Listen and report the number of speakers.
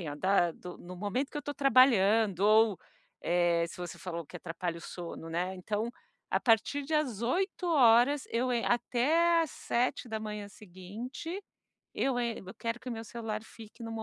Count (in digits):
1